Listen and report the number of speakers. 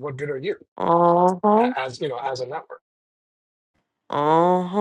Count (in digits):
2